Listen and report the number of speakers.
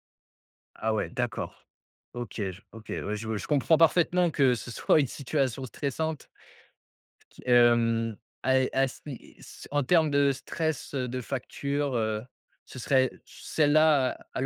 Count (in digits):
1